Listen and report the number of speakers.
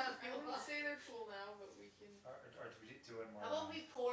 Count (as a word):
three